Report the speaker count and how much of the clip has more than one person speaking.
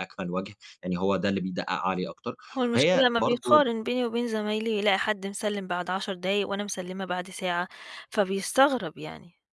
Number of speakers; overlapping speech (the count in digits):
2, about 9%